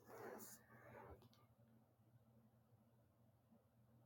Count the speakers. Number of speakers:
0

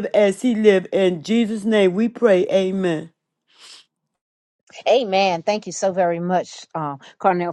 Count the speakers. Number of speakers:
2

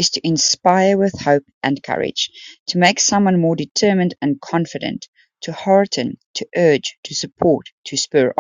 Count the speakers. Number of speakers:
1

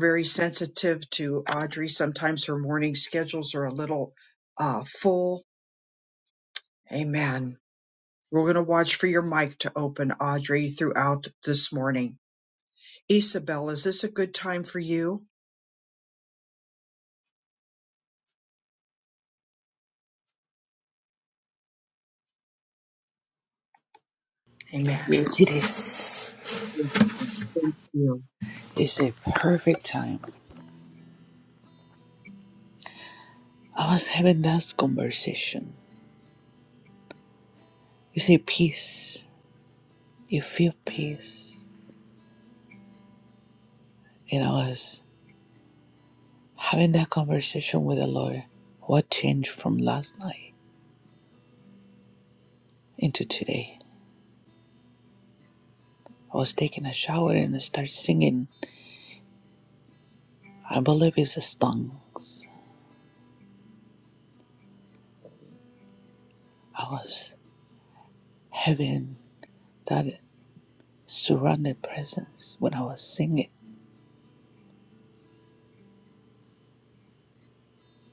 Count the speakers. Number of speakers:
2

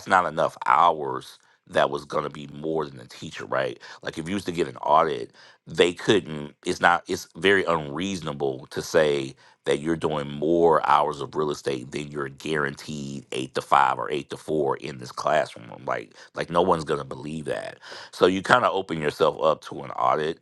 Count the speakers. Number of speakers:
1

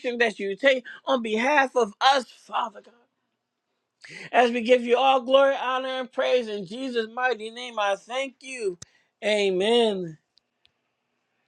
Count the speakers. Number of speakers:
1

